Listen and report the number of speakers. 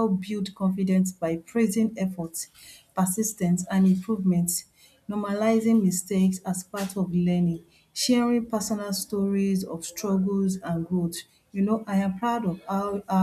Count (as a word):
one